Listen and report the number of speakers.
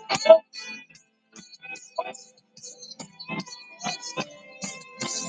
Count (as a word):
zero